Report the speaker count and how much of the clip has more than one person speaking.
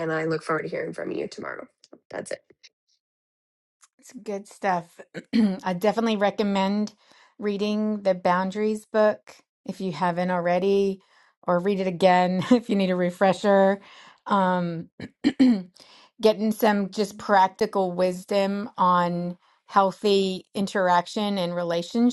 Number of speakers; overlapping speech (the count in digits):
2, no overlap